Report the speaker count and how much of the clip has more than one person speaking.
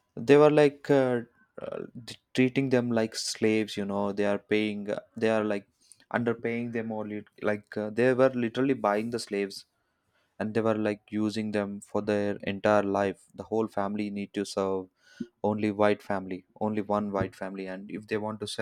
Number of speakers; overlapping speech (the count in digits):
1, no overlap